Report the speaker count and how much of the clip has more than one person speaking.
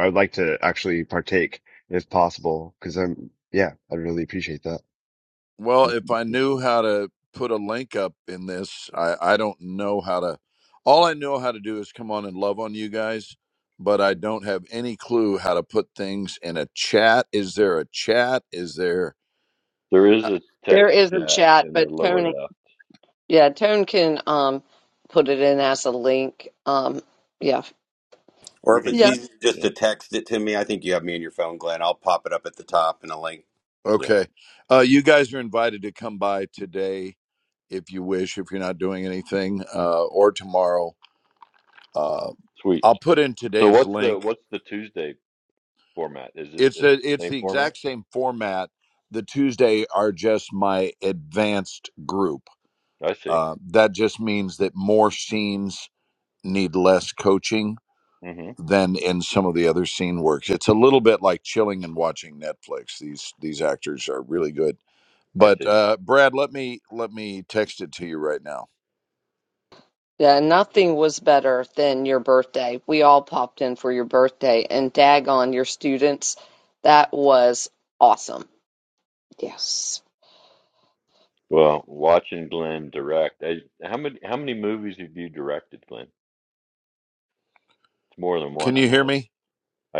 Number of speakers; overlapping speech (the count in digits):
5, about 5%